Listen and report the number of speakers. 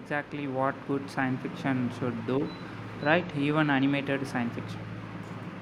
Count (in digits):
1